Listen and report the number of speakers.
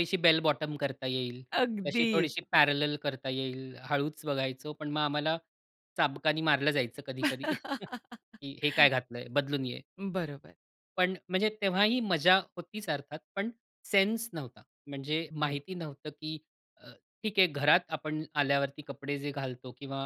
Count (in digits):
2